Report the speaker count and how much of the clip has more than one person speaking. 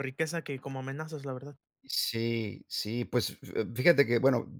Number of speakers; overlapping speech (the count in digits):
2, no overlap